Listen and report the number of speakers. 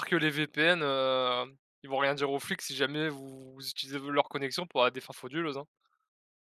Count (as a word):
one